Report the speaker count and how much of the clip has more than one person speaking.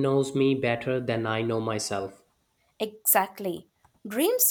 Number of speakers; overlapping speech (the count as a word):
two, no overlap